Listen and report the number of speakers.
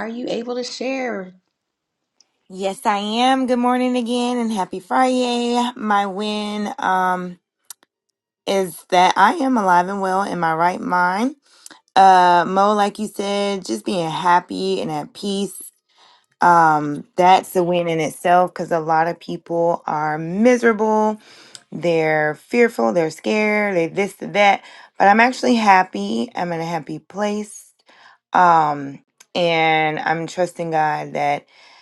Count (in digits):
2